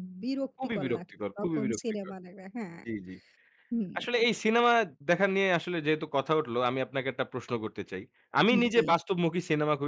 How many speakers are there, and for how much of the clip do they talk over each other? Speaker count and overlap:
2, about 16%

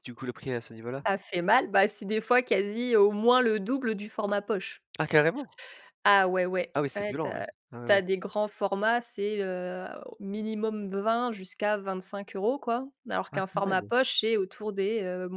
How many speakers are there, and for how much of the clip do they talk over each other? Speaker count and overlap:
2, about 9%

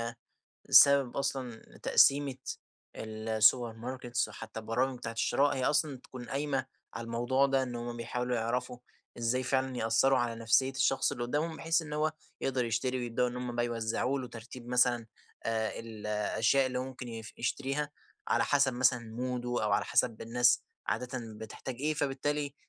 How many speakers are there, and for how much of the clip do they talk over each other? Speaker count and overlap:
1, no overlap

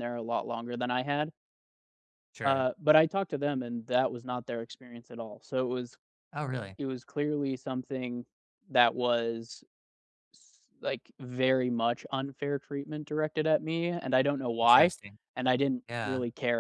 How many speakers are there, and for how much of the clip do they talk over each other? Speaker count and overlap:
2, about 4%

